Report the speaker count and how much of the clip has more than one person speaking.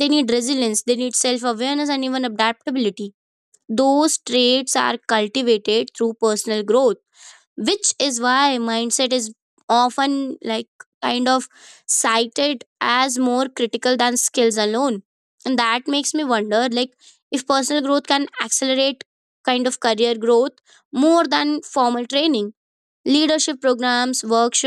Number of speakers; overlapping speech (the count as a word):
one, no overlap